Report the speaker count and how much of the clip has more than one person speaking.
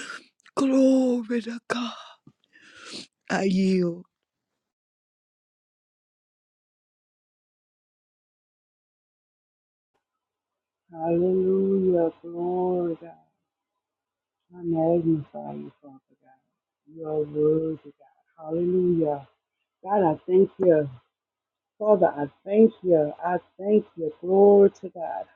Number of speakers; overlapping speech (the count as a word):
two, no overlap